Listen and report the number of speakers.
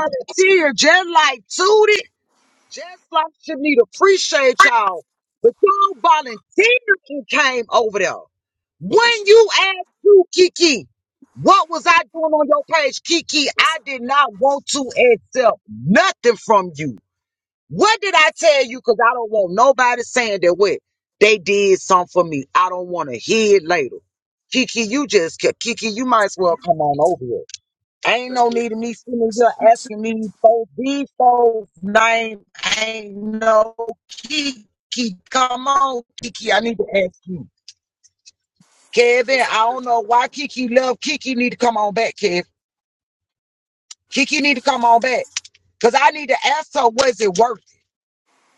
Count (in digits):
1